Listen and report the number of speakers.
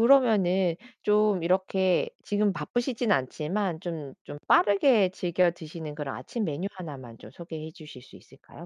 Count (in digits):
1